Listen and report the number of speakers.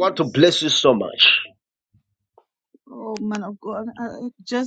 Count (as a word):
two